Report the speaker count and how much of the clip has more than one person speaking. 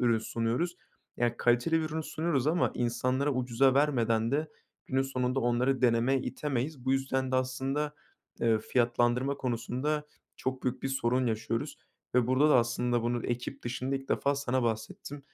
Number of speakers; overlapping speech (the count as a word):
one, no overlap